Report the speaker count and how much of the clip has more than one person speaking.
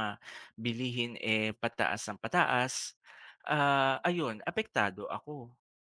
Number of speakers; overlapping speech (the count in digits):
1, no overlap